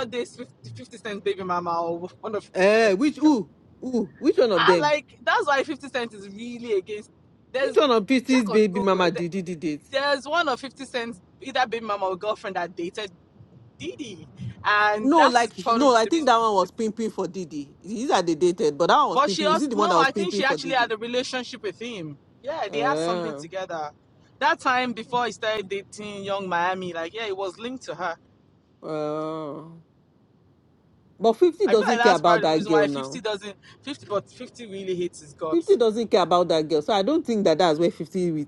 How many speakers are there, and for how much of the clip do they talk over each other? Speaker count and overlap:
2, about 18%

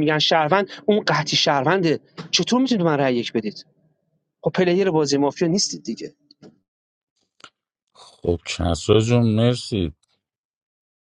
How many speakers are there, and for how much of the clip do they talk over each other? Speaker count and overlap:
2, no overlap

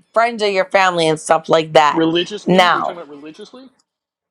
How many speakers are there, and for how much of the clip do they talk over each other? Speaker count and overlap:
2, about 13%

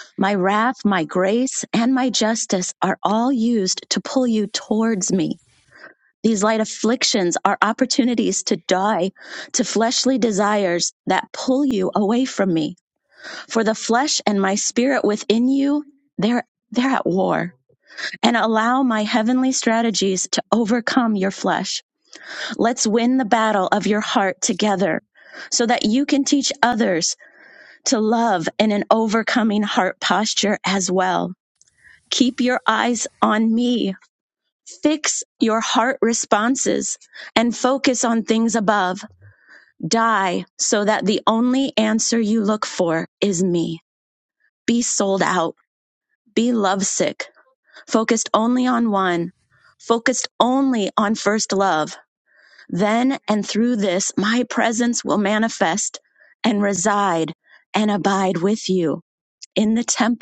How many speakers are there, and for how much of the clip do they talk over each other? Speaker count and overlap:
1, no overlap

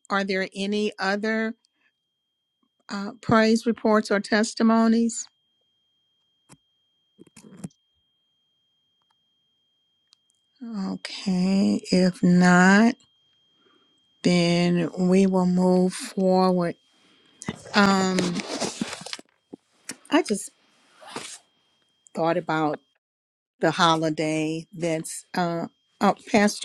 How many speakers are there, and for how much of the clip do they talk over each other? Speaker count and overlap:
1, no overlap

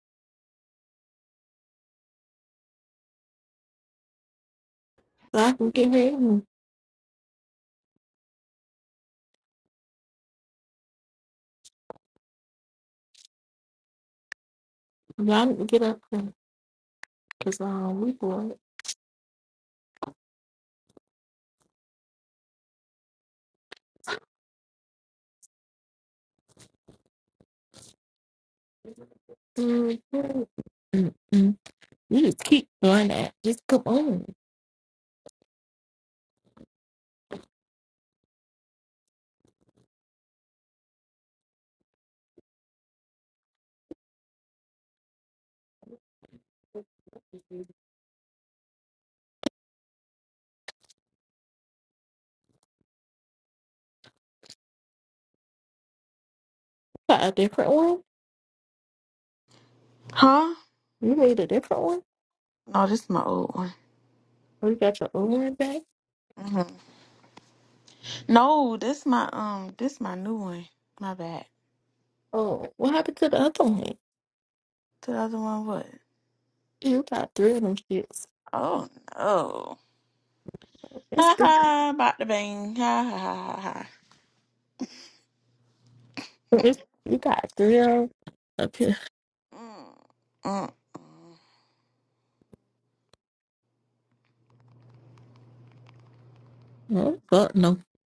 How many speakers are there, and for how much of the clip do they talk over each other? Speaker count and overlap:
2, under 1%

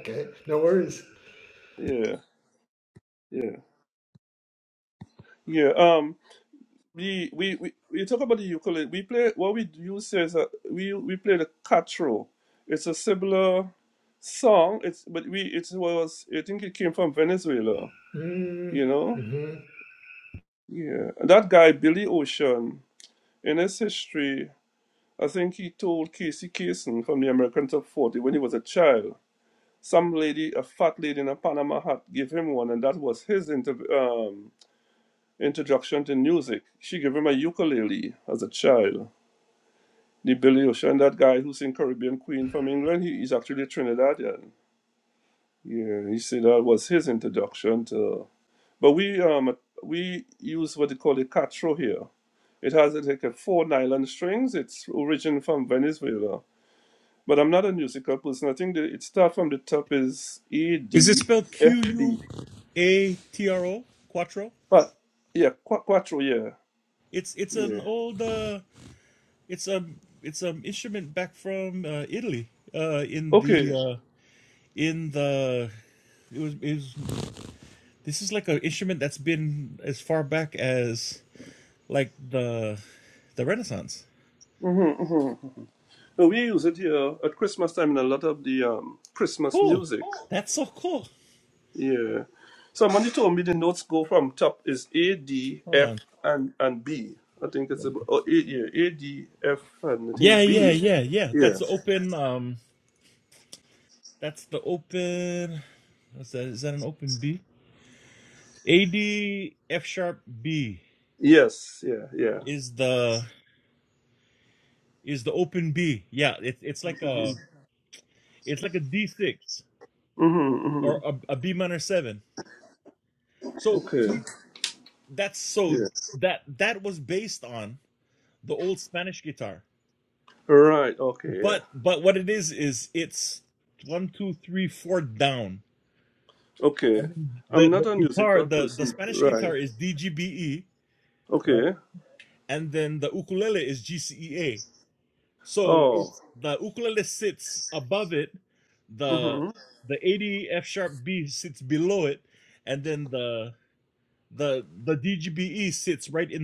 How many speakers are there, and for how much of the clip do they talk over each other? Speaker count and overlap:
3, about 5%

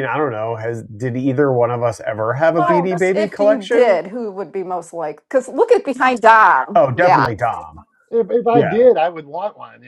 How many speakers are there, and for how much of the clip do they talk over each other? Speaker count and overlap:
3, about 23%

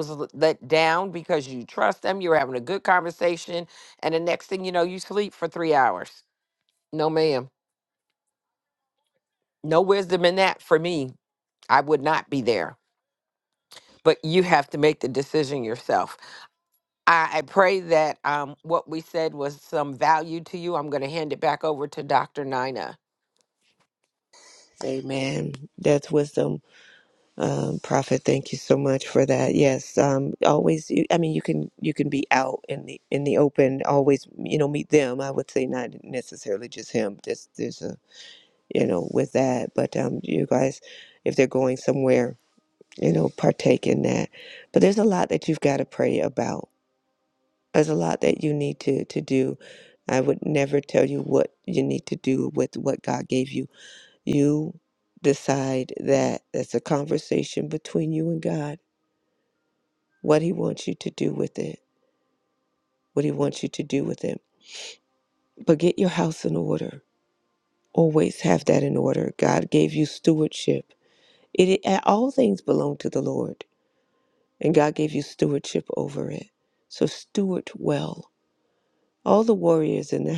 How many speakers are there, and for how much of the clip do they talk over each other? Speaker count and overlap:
2, no overlap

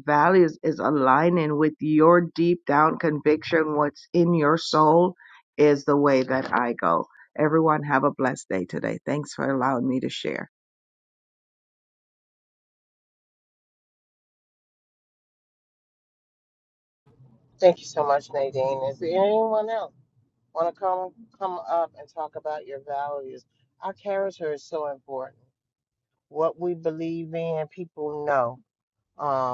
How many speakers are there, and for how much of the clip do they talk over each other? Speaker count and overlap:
2, no overlap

